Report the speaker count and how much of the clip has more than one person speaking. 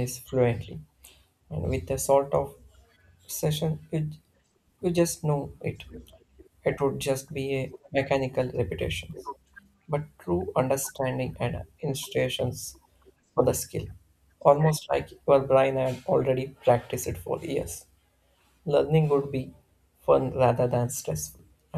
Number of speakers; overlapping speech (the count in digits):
1, no overlap